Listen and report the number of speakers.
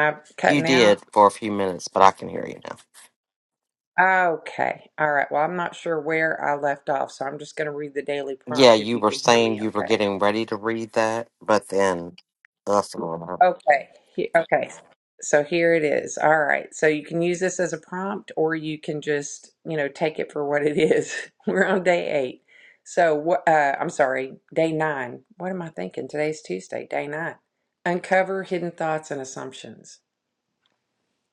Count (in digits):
2